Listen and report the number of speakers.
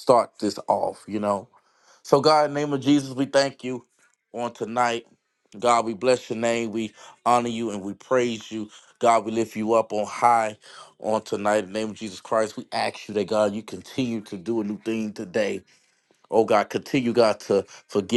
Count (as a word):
one